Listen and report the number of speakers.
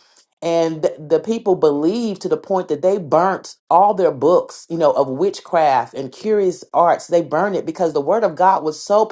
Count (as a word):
one